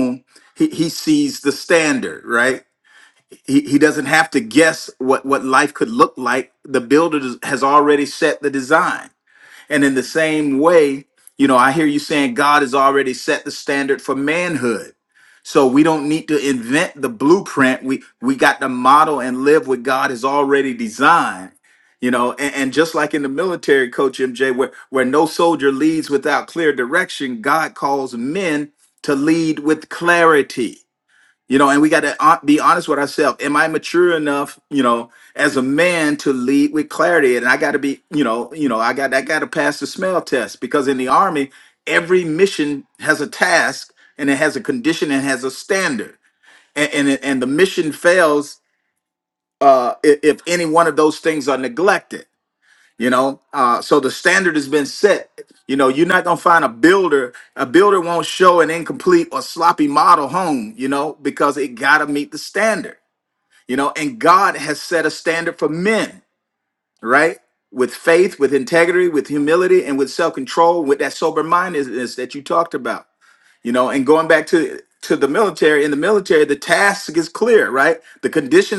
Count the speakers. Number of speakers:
1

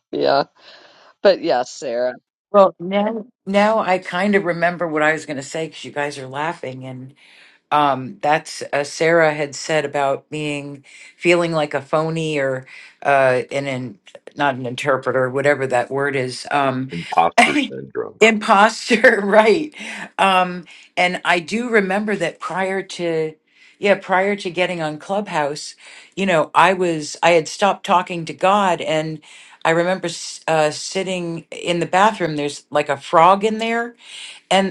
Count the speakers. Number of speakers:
3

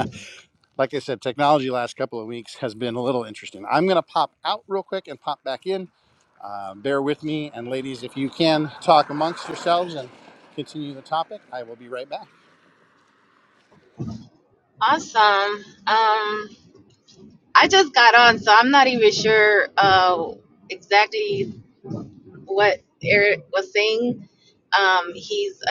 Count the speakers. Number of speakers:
2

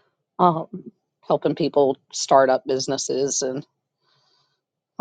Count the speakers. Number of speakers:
1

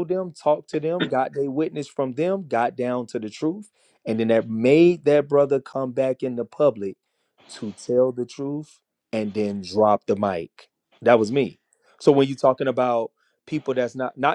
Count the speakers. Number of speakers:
1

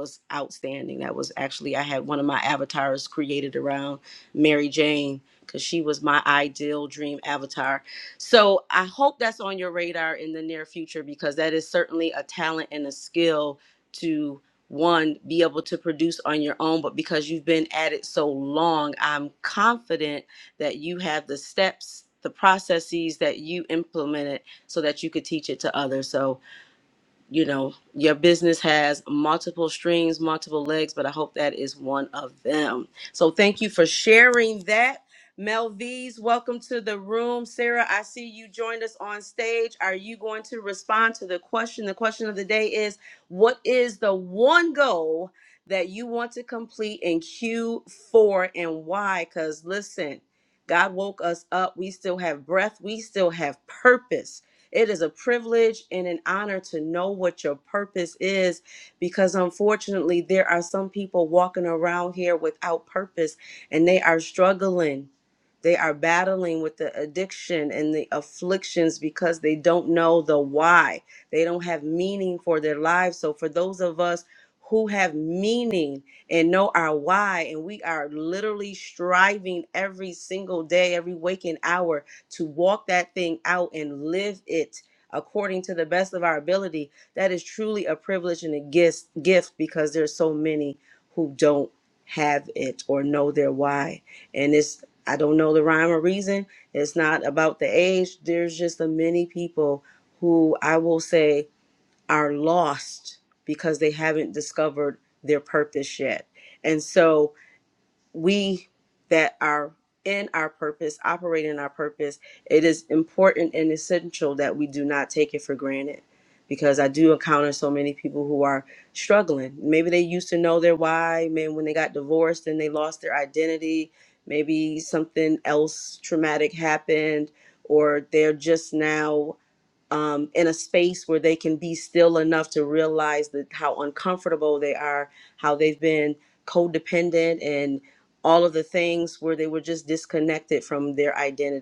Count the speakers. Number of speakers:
1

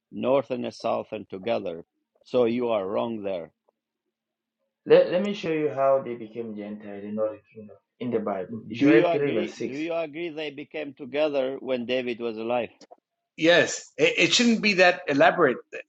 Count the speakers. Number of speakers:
3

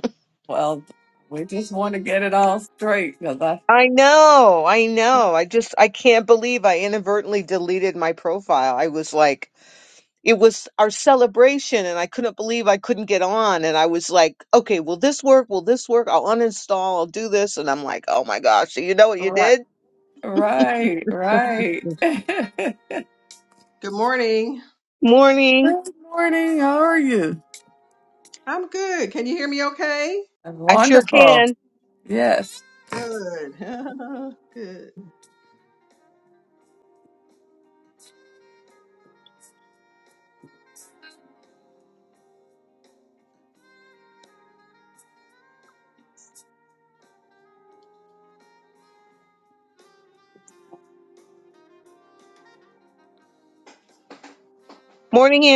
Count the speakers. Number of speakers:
3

